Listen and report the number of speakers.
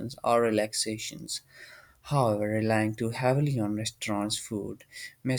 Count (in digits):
1